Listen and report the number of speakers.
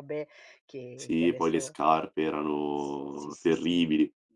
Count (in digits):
2